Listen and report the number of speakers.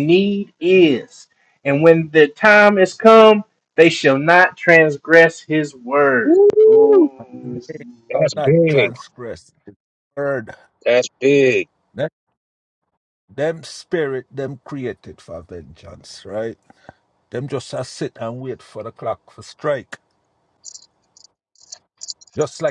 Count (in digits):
3